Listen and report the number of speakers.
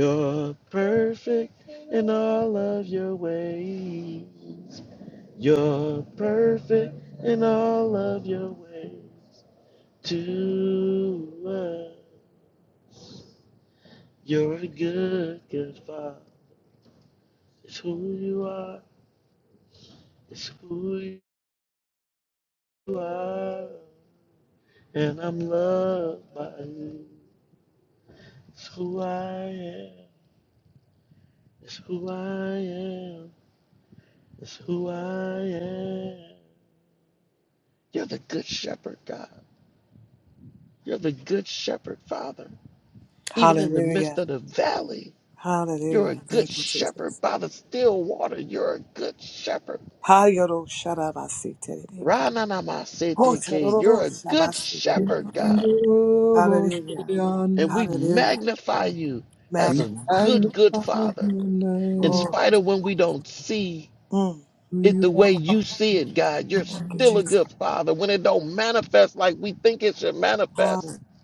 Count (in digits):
3